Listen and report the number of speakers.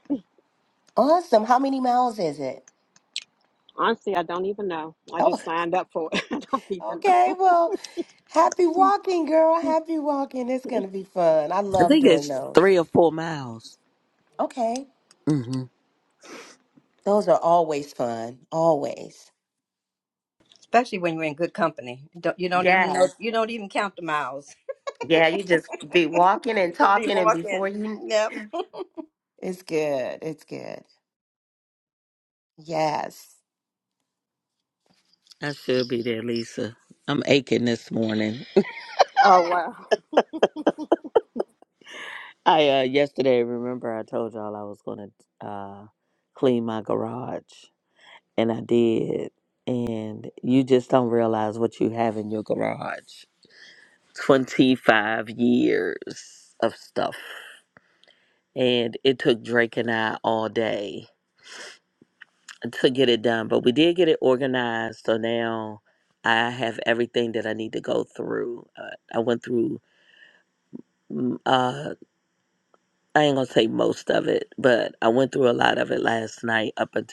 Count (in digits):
4